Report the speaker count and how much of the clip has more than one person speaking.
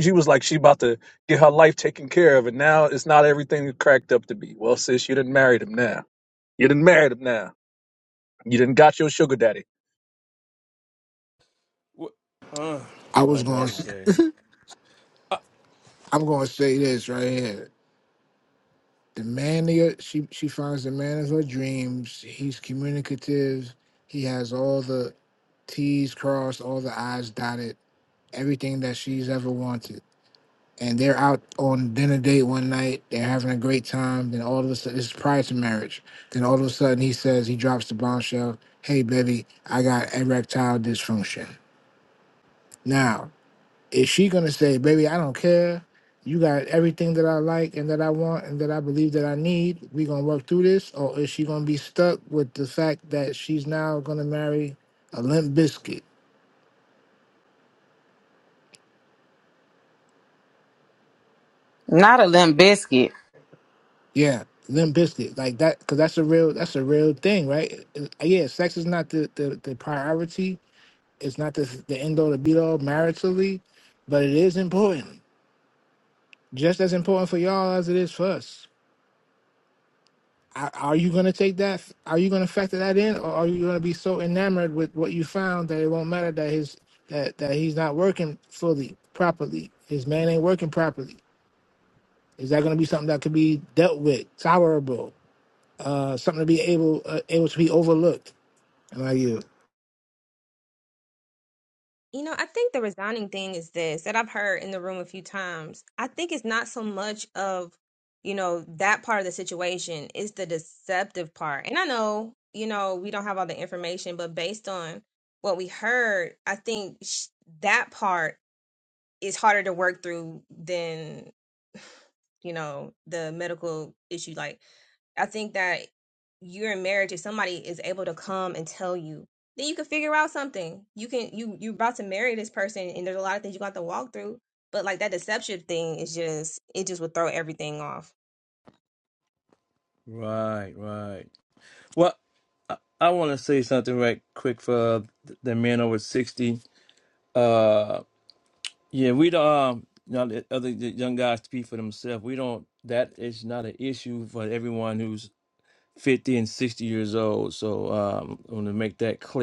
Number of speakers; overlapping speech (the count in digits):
5, under 1%